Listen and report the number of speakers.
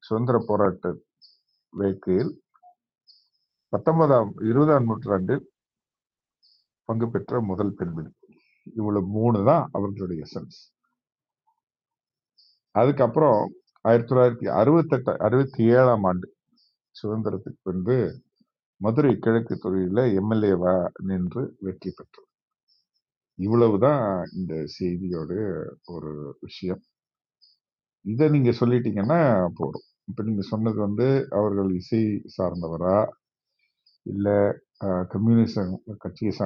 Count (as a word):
one